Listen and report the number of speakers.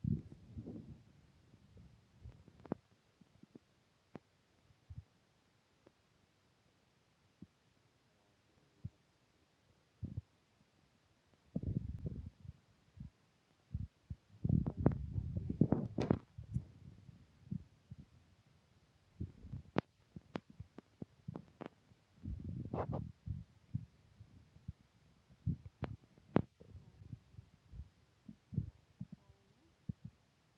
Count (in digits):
0